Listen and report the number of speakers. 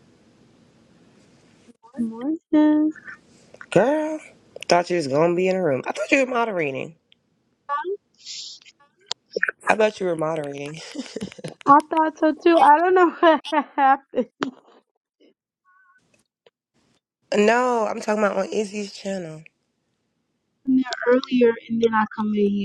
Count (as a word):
two